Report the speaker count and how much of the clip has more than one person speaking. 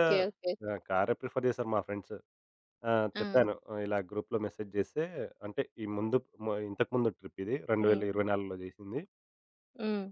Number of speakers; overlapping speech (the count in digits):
2, about 5%